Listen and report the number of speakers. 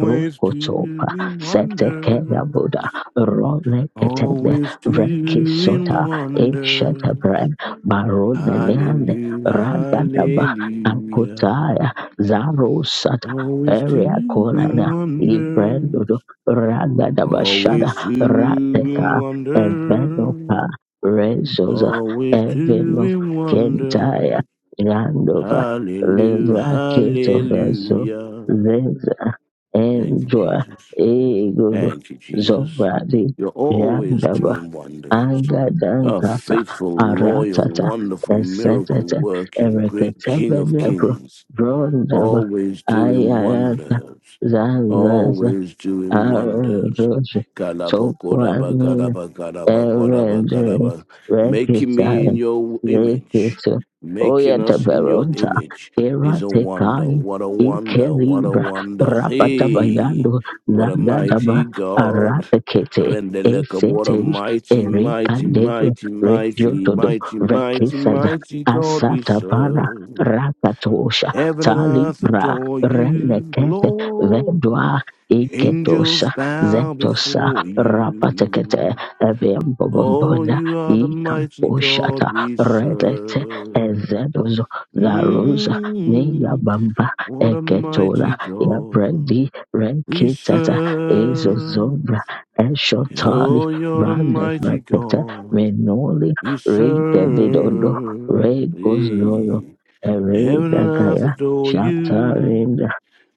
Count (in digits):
2